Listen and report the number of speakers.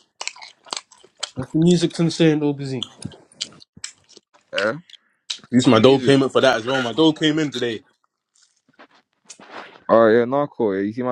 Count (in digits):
3